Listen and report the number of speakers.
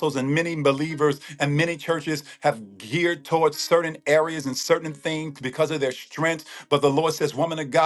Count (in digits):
1